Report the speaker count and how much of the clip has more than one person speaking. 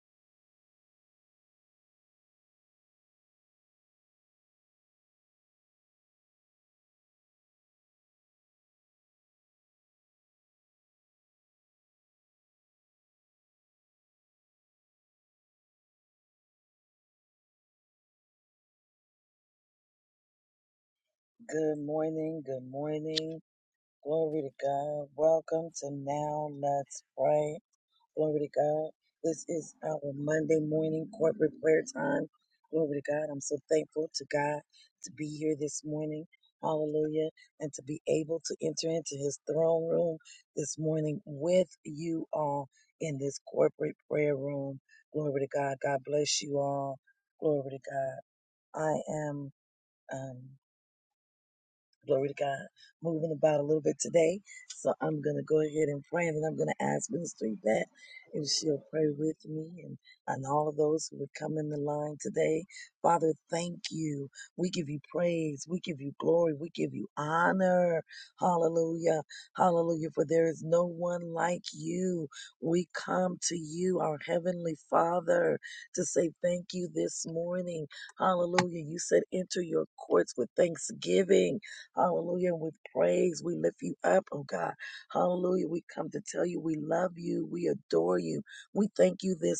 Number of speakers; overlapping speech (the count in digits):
1, no overlap